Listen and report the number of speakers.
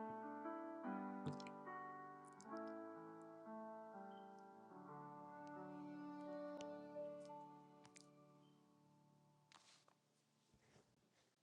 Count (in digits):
0